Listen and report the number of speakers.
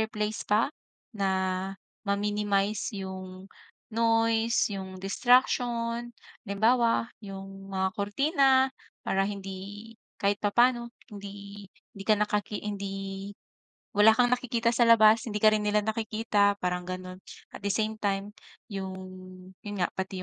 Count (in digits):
1